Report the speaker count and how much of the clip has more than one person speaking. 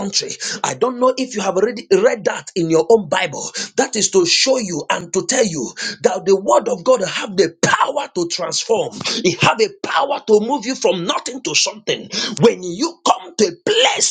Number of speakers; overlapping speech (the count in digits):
1, no overlap